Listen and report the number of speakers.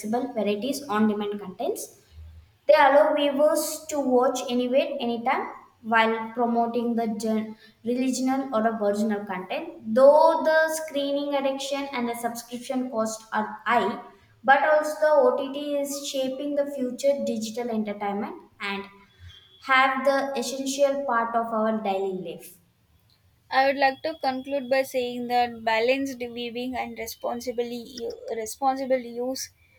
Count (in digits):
2